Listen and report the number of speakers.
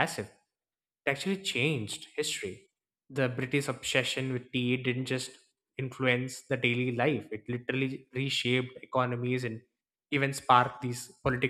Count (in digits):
1